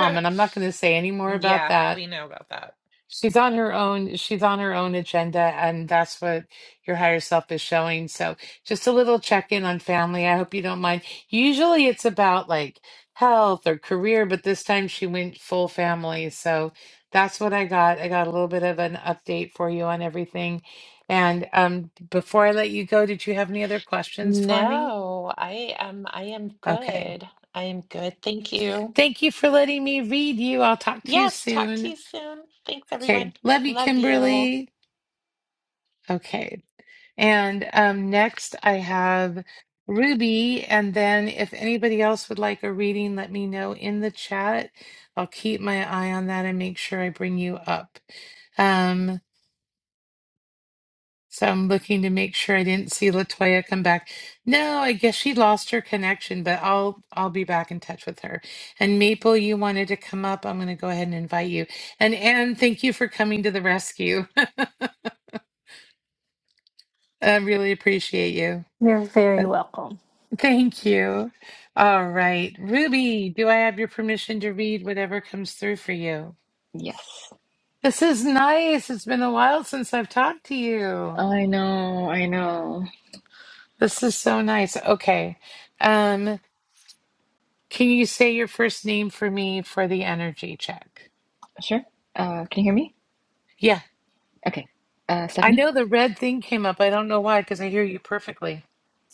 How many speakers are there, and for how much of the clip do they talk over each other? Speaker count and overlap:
4, about 4%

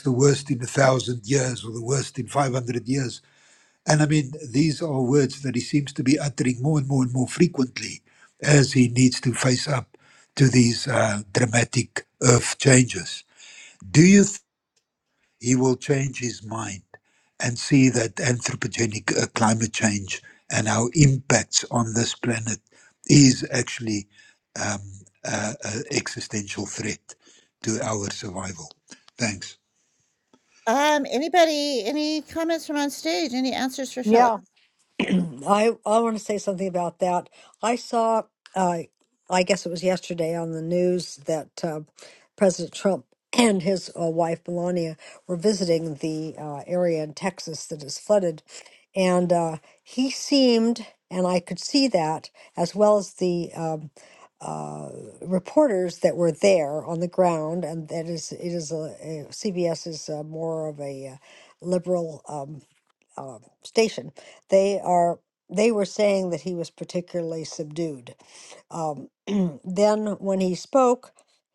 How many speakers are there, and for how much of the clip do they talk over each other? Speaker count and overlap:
3, under 1%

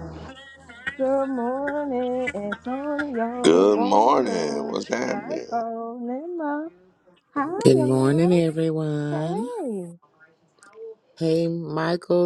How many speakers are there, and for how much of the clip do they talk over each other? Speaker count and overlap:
3, about 23%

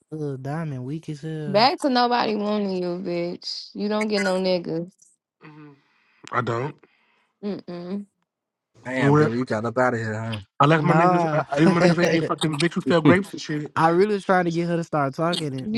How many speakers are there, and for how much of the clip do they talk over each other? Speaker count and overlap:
4, about 9%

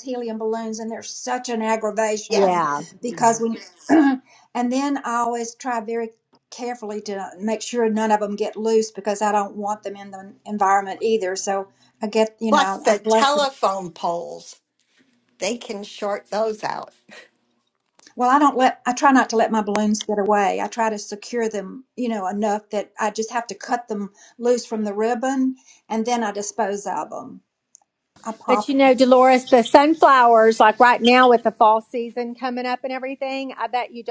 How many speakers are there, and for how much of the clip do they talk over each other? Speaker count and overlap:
3, about 5%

